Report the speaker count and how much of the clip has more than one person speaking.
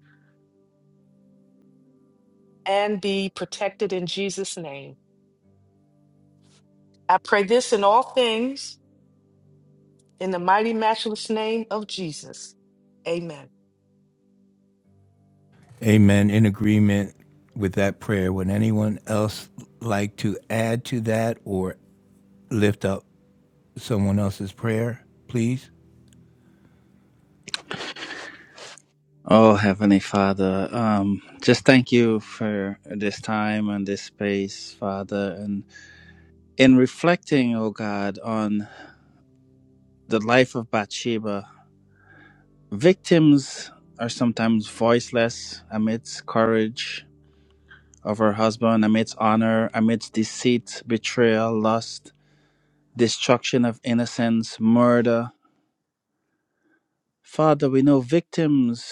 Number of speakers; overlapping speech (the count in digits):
3, no overlap